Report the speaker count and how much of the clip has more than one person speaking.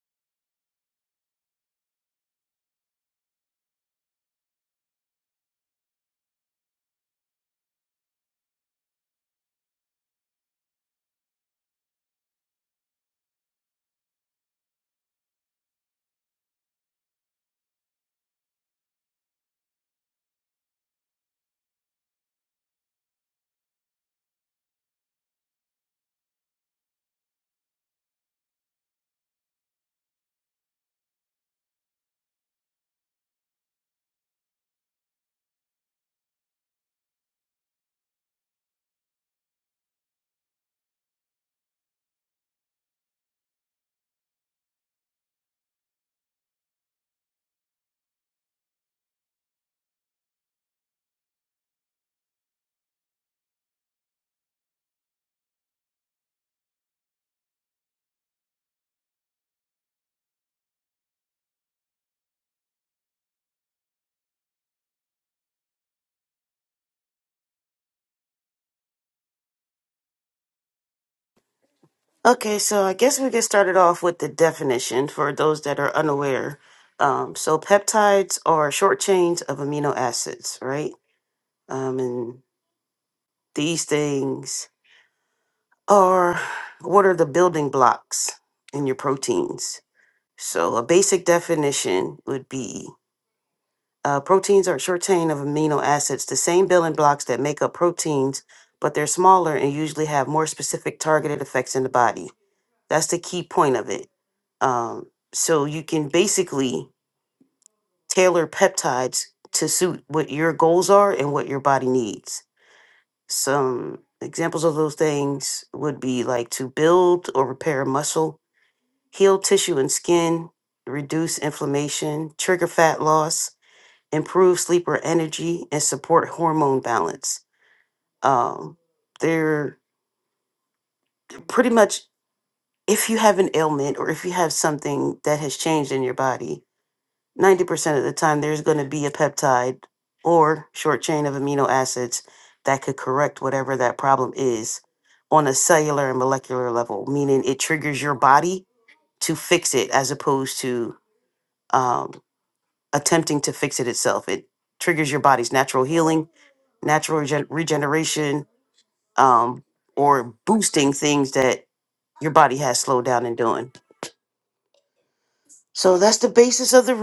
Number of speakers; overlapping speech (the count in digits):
1, no overlap